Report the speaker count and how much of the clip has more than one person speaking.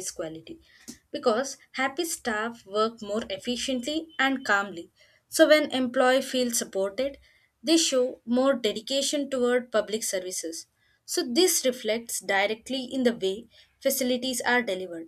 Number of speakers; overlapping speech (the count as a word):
one, no overlap